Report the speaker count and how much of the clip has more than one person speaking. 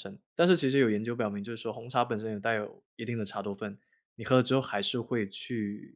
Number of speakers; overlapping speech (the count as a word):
one, no overlap